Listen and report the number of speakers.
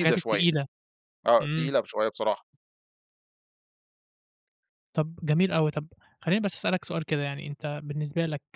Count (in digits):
2